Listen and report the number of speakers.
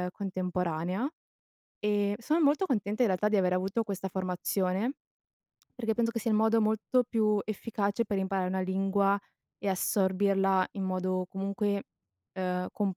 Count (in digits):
1